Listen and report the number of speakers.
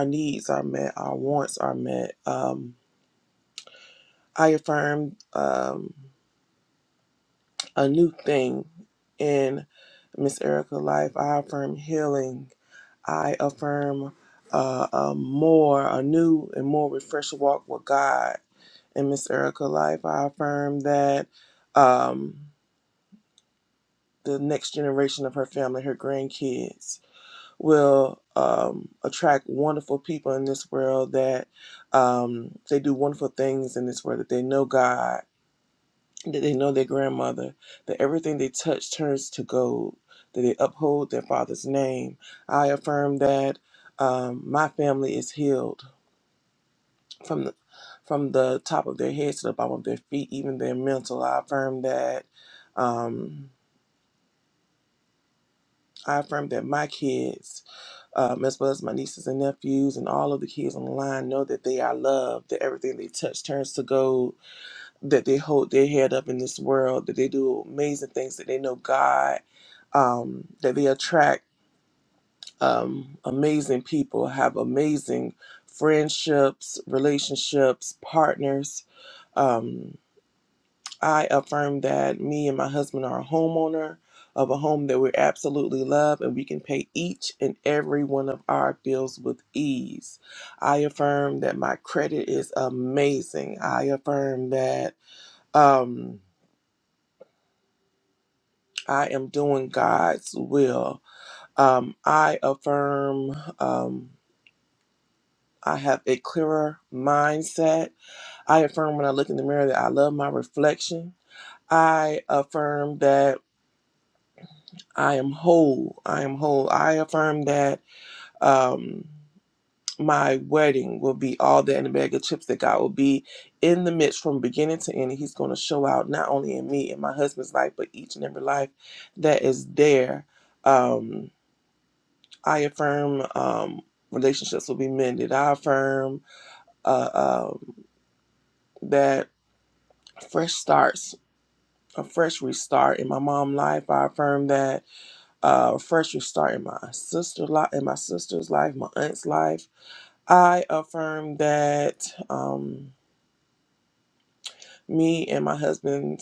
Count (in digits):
1